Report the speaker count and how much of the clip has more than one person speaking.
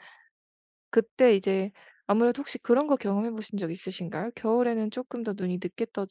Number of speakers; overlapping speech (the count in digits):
1, no overlap